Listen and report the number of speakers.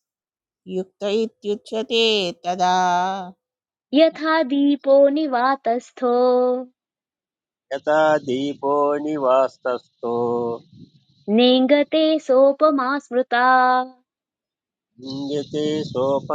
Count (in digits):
3